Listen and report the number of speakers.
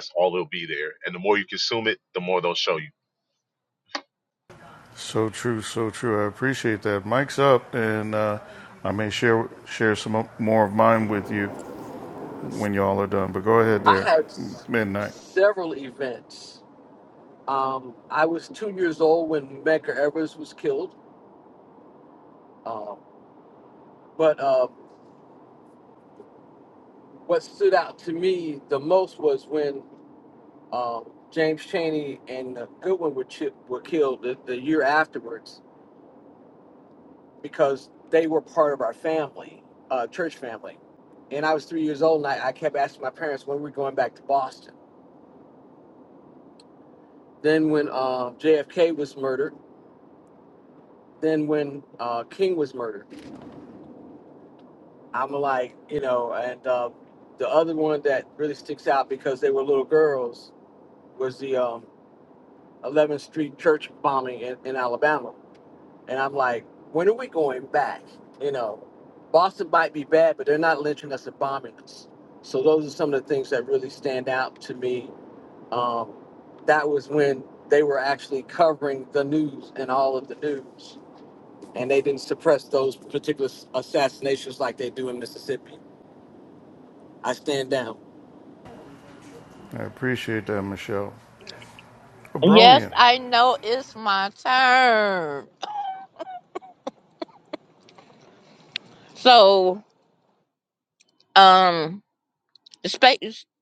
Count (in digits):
4